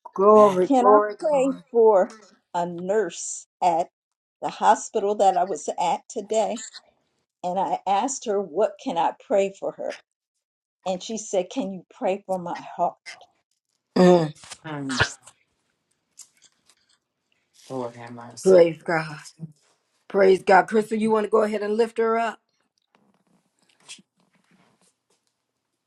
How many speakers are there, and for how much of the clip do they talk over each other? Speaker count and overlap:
3, about 5%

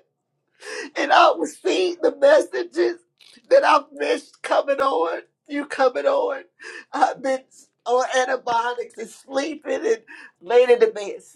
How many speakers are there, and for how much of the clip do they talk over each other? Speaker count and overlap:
1, no overlap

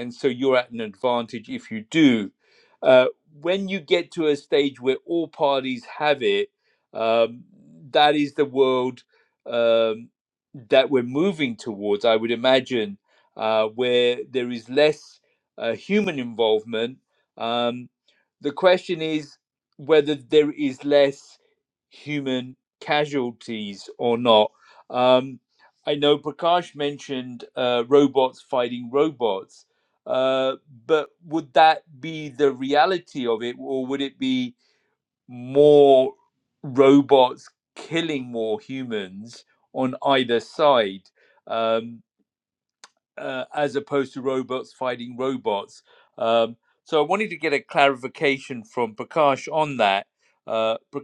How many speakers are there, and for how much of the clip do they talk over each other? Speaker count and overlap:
1, no overlap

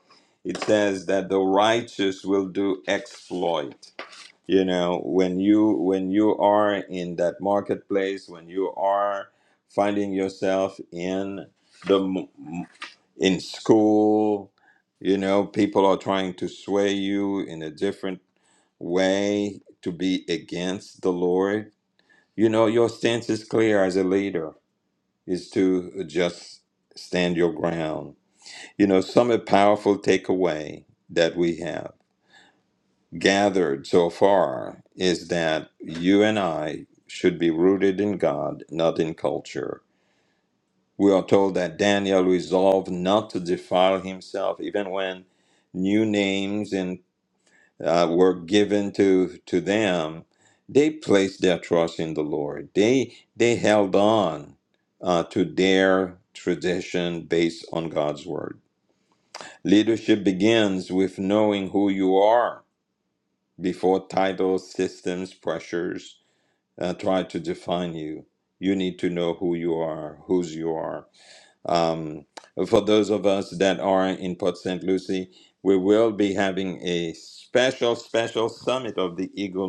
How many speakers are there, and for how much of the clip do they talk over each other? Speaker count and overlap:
1, no overlap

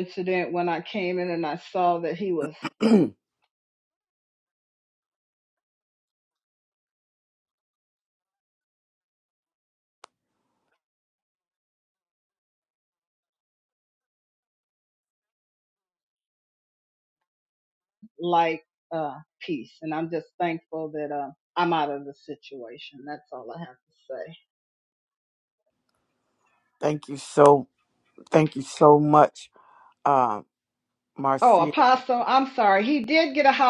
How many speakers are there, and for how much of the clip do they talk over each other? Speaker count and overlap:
2, about 1%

